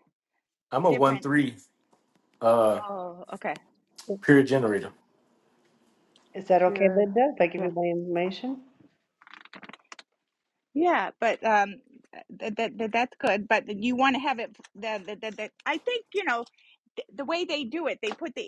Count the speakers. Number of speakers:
three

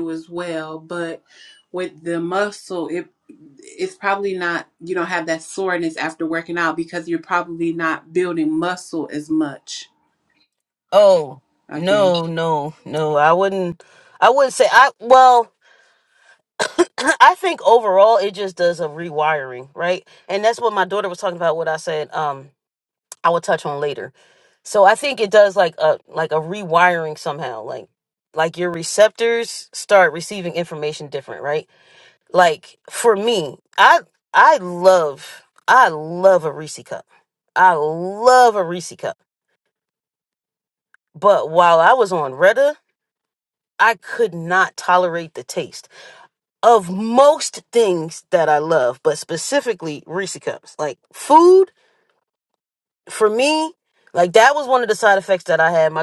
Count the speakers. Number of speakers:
two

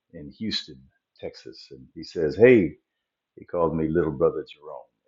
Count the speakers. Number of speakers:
one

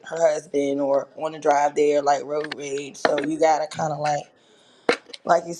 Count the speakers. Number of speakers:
one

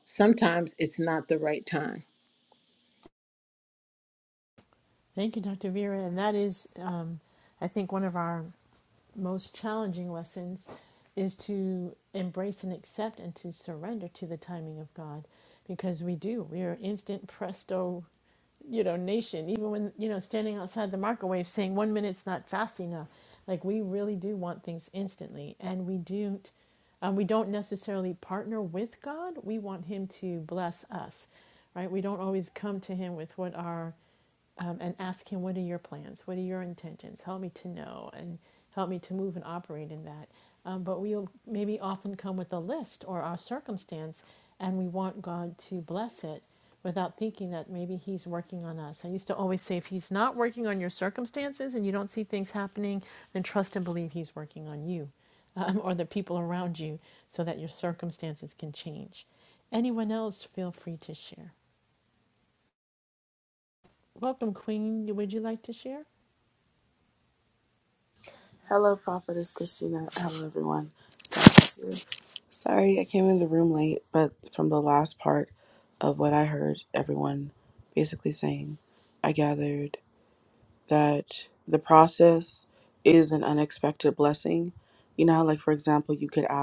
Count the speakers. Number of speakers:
three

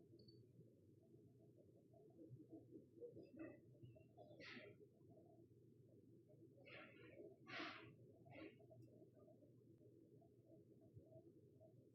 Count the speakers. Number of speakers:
zero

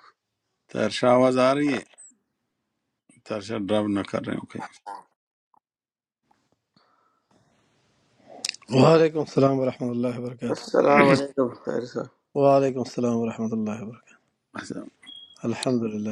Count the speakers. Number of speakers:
three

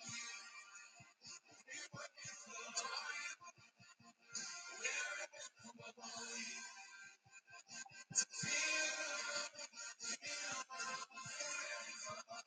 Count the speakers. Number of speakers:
zero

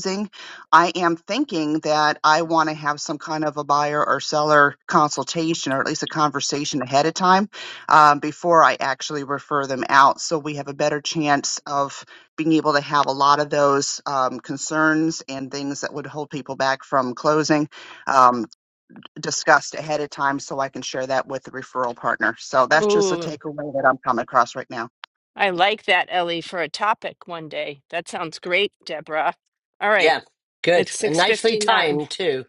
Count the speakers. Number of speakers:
three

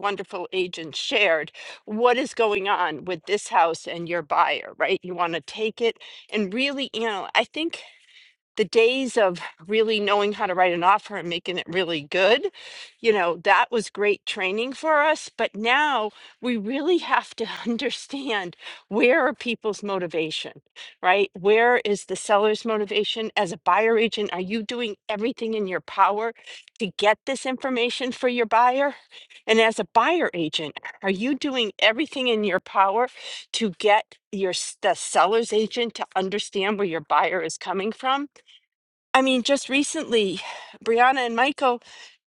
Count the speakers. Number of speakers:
one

